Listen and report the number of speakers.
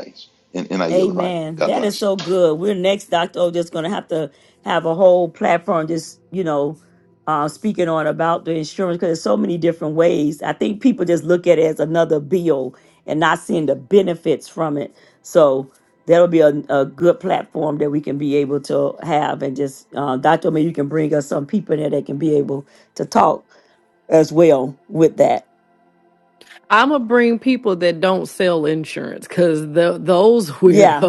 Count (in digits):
3